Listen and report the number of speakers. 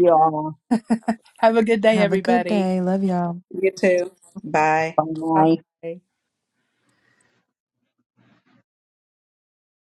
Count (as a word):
four